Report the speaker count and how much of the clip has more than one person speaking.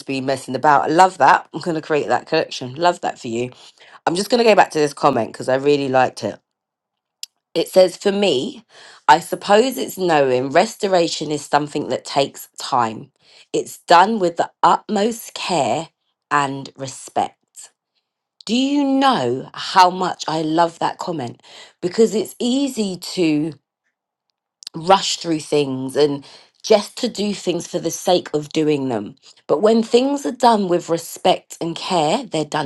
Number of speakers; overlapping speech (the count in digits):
1, no overlap